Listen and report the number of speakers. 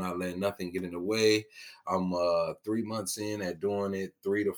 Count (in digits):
1